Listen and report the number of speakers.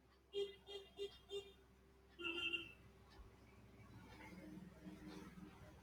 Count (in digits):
0